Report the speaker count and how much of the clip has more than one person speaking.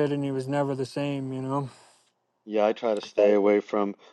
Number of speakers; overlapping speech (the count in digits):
2, no overlap